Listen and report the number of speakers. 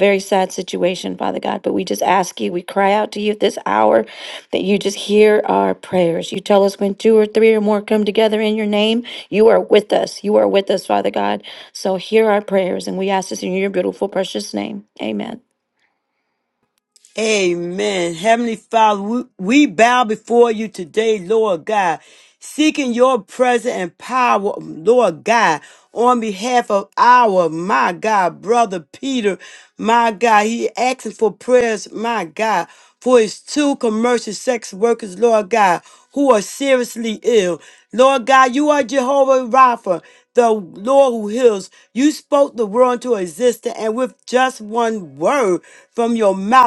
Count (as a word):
two